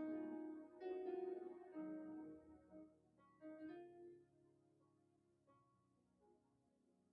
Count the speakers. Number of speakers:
0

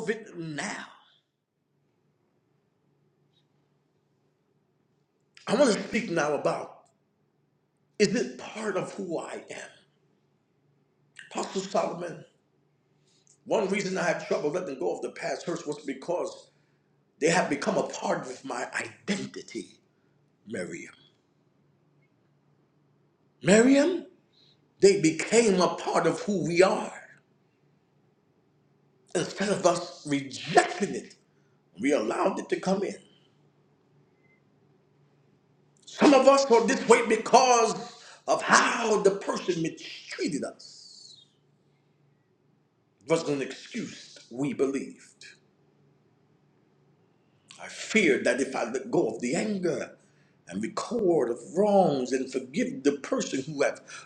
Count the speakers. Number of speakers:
1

